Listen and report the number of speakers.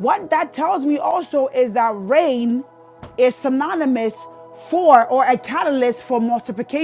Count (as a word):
one